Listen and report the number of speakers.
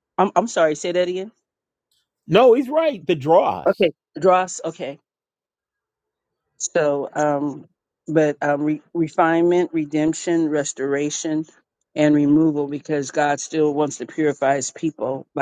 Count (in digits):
2